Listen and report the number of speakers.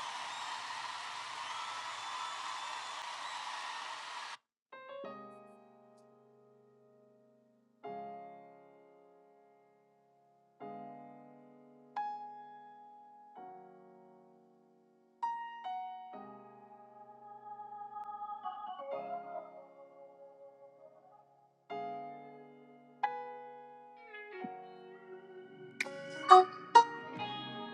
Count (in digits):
0